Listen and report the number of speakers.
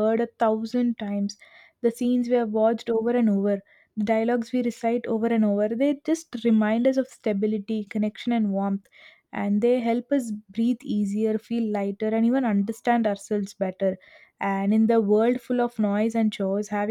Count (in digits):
1